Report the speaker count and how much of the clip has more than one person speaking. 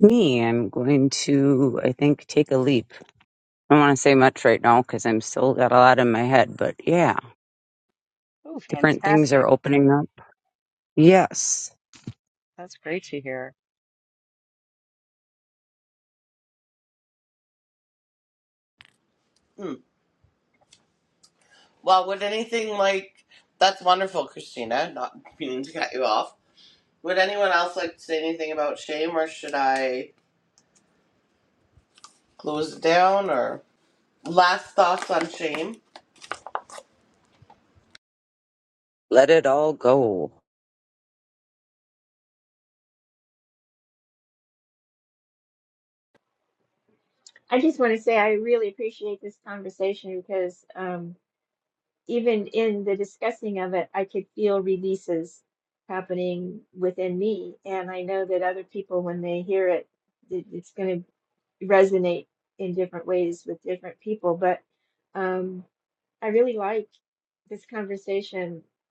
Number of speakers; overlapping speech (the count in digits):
4, about 1%